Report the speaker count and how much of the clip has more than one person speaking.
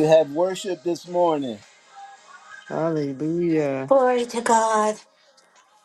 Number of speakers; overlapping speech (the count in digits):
3, no overlap